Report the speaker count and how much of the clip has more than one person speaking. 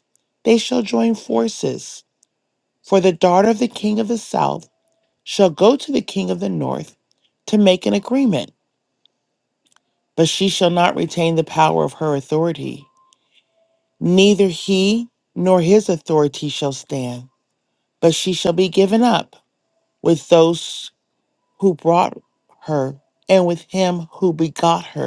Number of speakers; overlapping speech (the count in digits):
1, no overlap